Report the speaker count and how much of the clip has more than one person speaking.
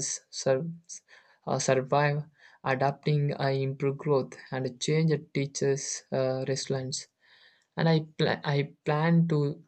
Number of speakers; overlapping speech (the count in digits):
1, no overlap